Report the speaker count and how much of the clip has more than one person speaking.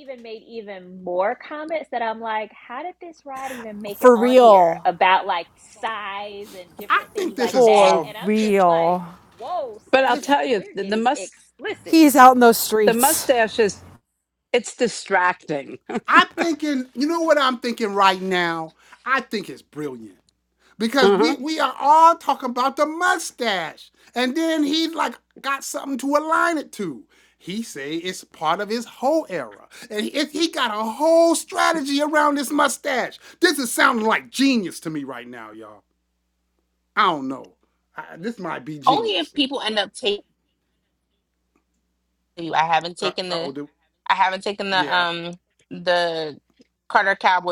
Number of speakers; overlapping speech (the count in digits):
5, about 12%